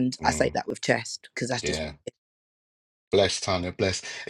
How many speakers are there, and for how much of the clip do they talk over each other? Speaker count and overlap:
2, about 13%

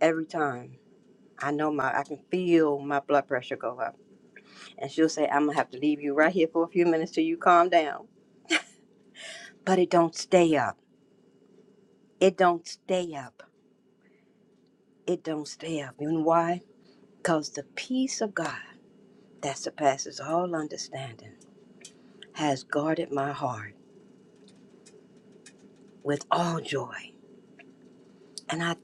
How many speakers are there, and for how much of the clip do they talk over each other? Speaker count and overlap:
1, no overlap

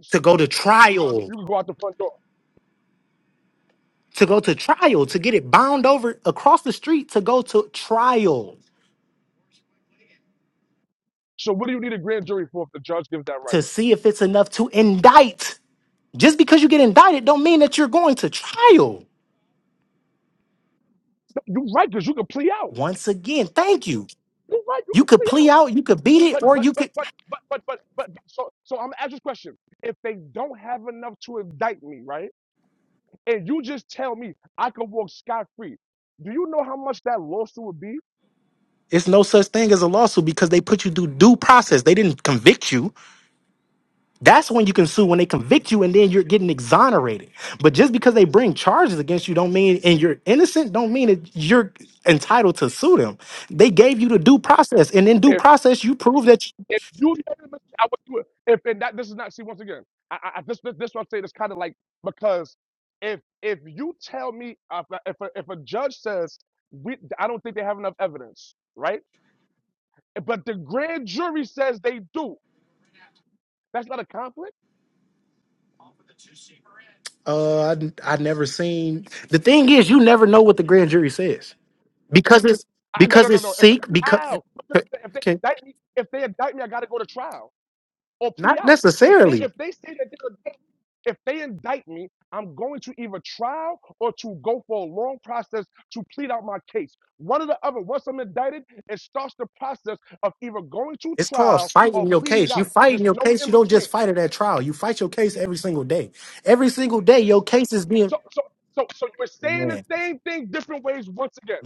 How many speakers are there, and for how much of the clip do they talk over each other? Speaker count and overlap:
2, about 6%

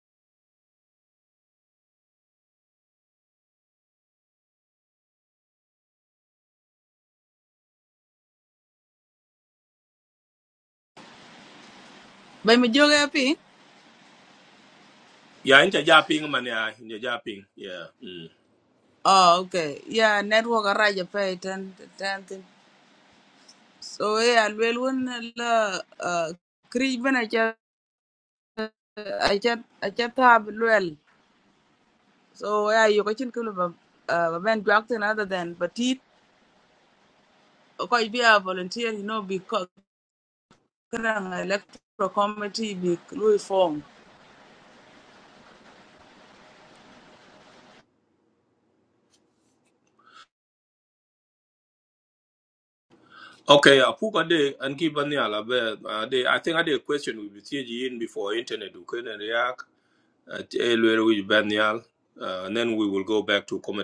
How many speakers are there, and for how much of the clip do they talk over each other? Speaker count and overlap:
2, no overlap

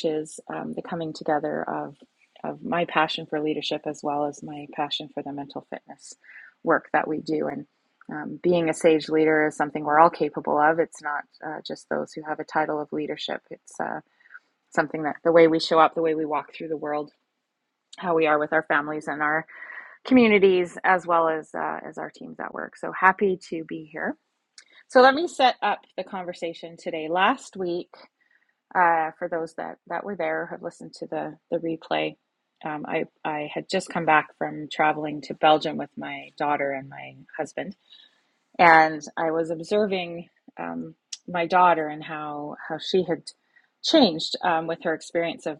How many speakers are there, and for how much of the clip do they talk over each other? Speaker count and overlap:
1, no overlap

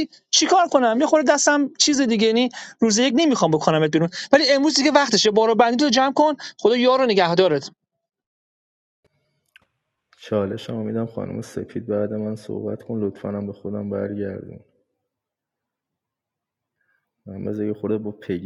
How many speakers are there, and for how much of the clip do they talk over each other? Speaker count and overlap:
2, no overlap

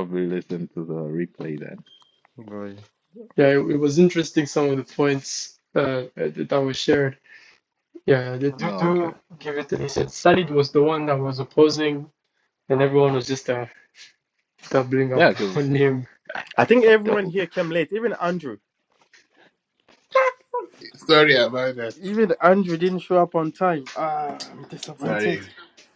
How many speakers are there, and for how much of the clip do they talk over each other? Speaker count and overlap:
4, about 7%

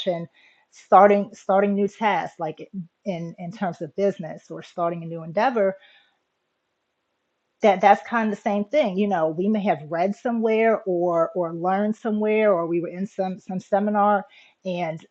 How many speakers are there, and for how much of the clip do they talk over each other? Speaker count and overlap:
1, no overlap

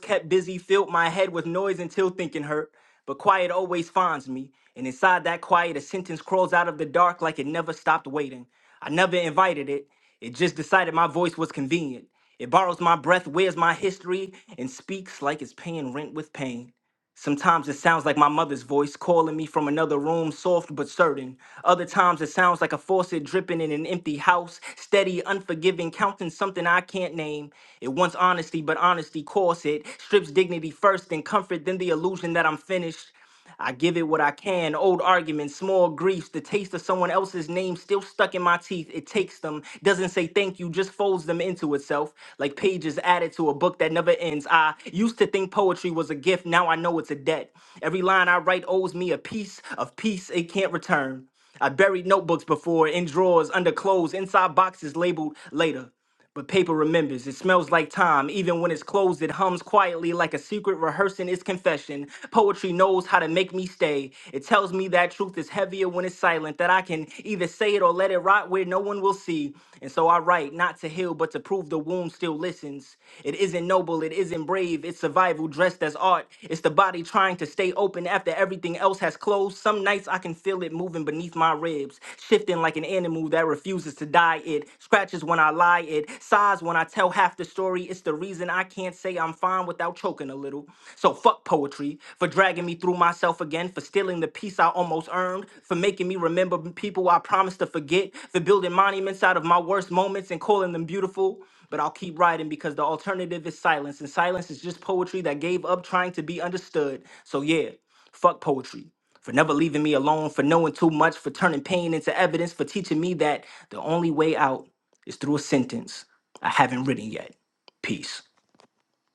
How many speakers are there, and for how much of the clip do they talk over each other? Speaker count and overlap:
1, no overlap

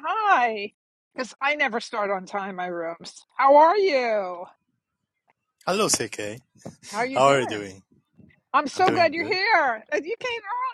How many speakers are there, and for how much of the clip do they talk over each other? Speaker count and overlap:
2, about 10%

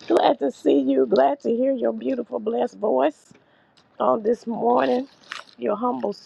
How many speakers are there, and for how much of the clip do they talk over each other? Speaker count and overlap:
1, no overlap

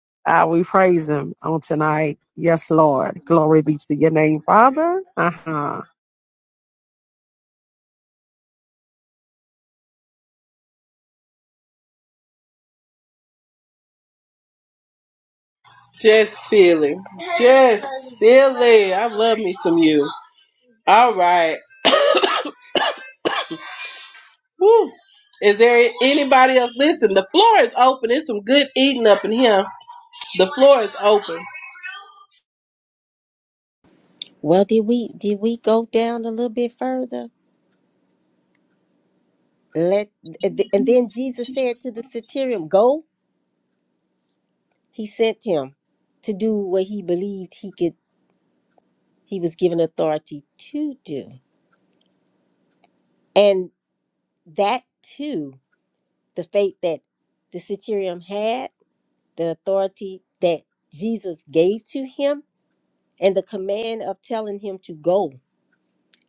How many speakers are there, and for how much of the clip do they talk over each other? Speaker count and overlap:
3, no overlap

